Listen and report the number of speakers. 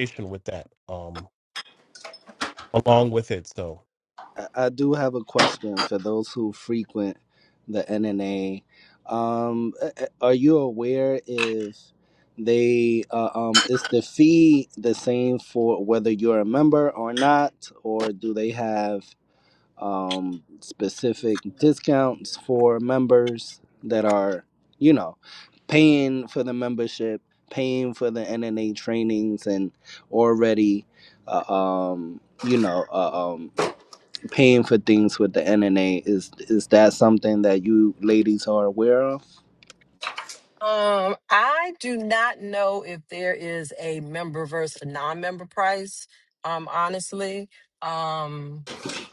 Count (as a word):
three